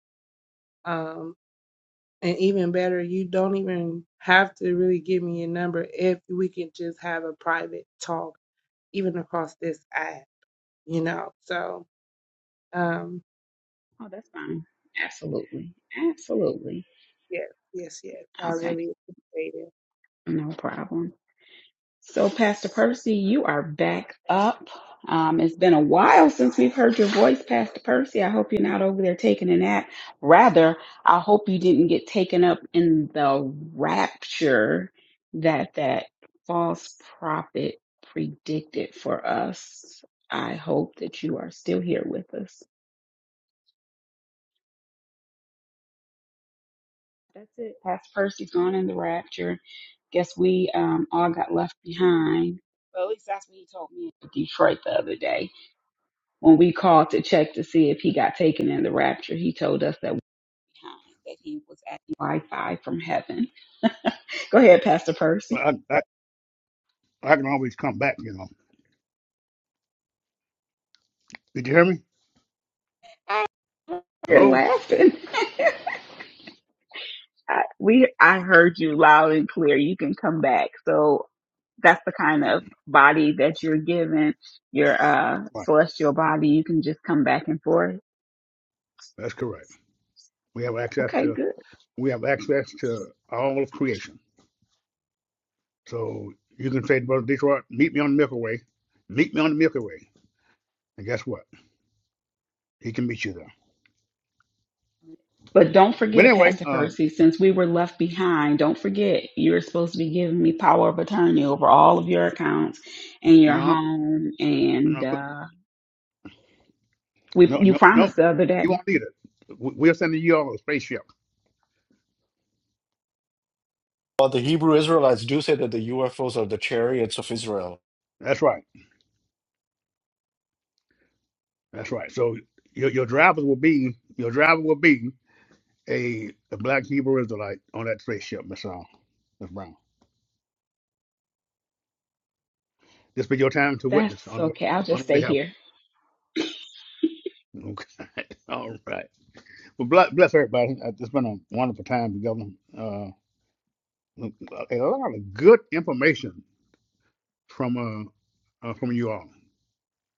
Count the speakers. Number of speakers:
four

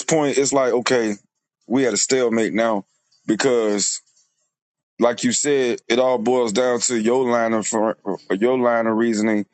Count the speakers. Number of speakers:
one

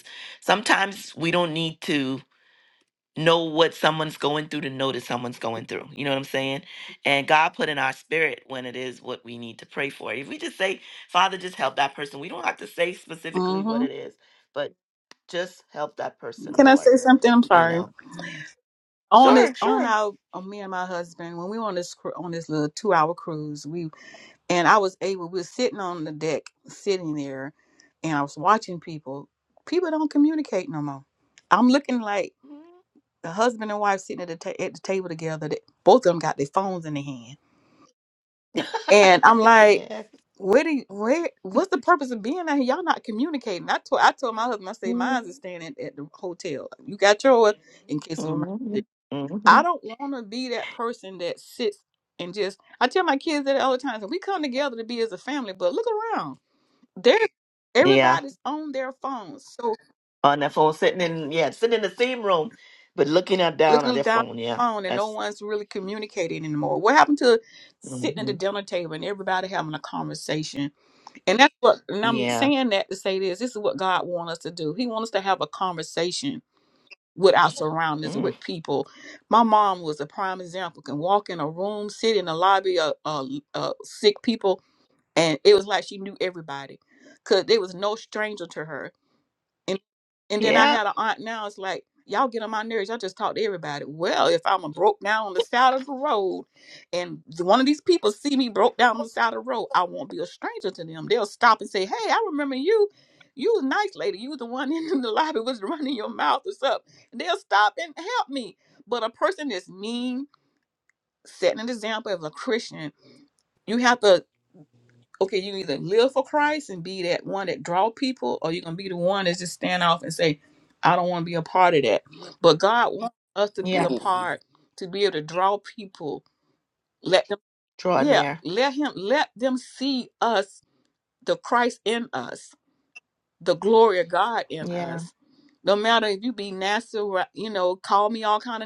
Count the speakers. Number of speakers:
two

